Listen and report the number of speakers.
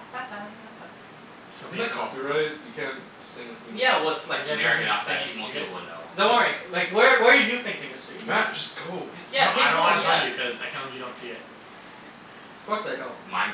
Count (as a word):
four